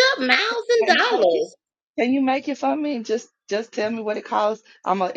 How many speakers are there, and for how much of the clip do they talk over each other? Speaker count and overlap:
2, about 12%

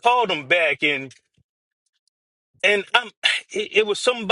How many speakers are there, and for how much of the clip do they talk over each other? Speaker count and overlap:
1, no overlap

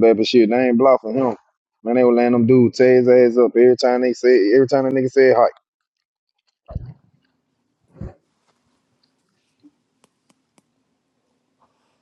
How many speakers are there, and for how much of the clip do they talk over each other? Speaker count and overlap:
1, no overlap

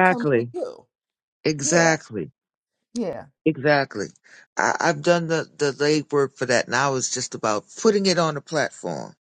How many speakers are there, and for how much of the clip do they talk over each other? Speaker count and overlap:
2, about 9%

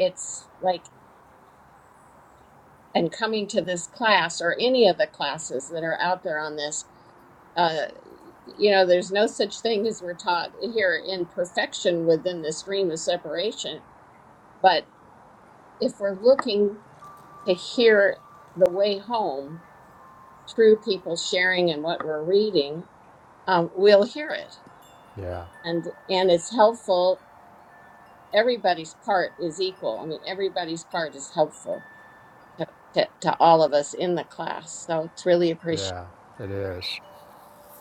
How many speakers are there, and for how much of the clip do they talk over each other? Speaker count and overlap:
2, under 1%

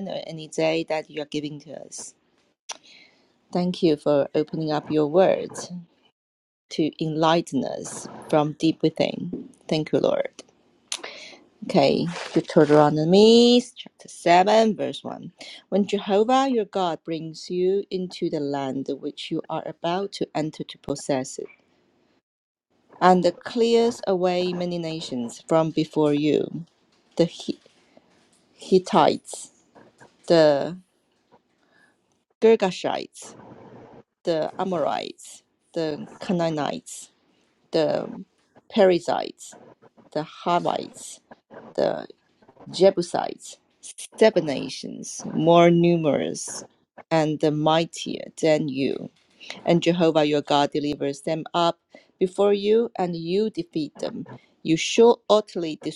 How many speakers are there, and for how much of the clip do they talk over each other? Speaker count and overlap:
1, no overlap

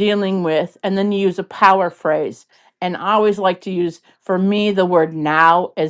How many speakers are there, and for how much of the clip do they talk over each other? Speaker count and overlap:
1, no overlap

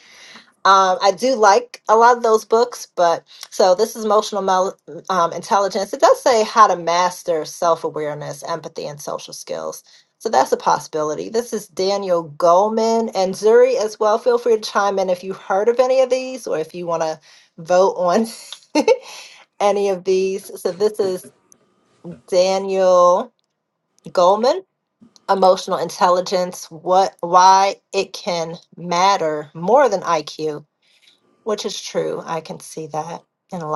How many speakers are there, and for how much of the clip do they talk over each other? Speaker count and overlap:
1, no overlap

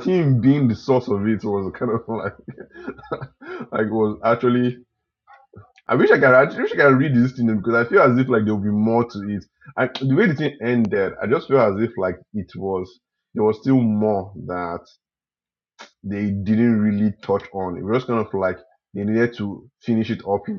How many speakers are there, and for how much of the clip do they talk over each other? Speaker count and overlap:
1, no overlap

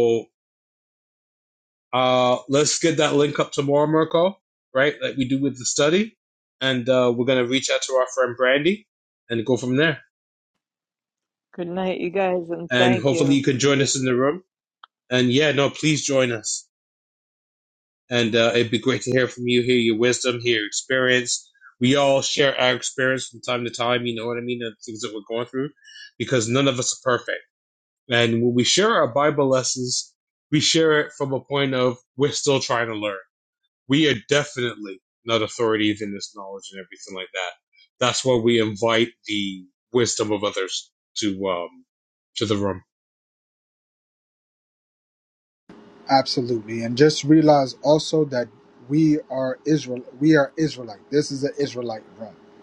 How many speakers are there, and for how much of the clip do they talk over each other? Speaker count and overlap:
3, about 1%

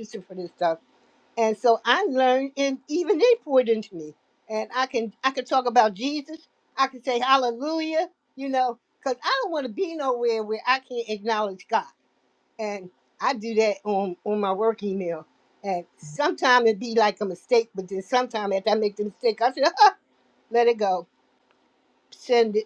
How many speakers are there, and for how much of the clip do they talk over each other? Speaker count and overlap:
1, no overlap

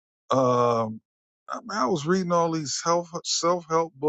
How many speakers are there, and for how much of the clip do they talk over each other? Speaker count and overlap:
1, no overlap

